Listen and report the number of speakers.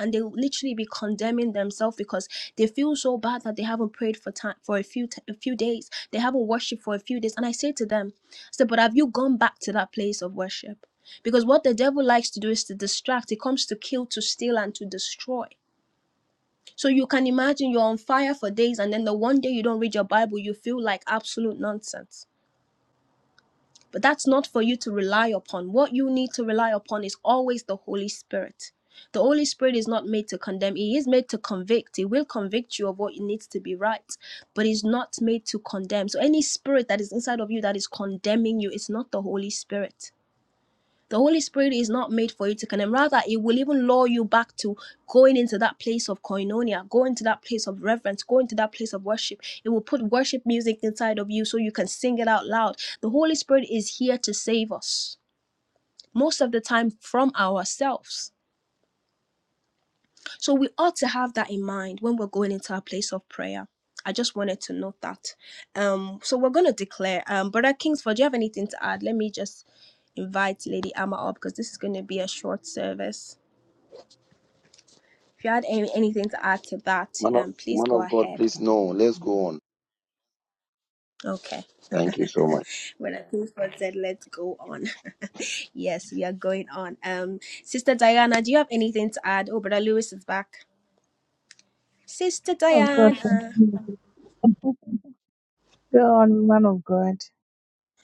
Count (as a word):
three